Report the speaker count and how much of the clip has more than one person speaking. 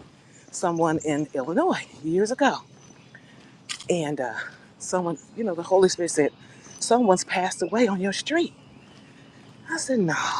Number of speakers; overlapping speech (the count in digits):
1, no overlap